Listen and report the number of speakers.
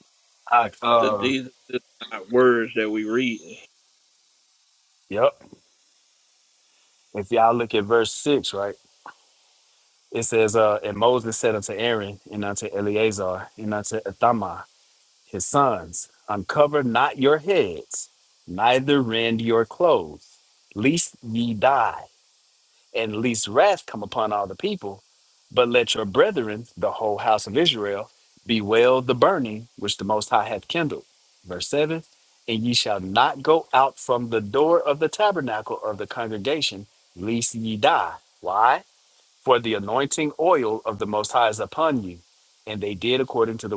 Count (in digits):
2